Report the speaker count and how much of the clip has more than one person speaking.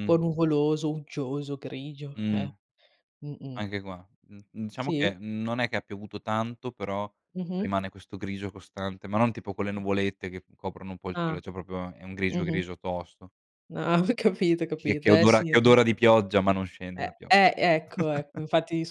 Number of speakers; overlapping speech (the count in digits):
2, about 14%